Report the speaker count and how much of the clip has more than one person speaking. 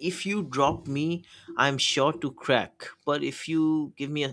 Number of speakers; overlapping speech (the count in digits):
1, no overlap